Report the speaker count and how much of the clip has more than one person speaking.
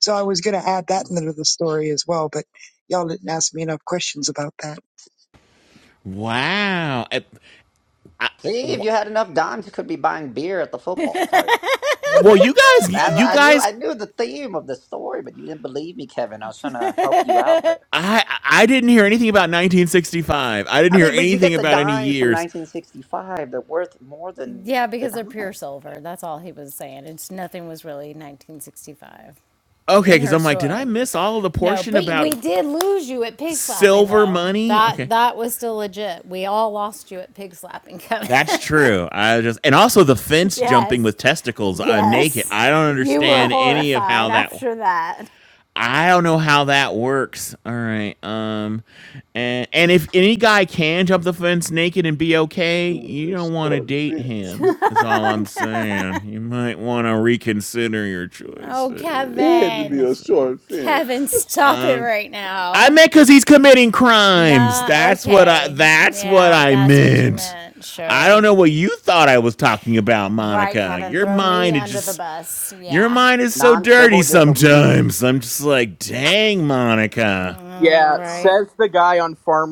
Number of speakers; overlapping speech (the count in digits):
6, about 27%